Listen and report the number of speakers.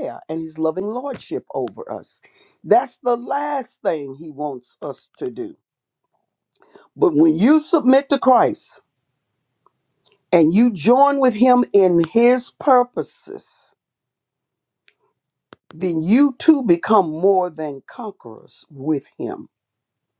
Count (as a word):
one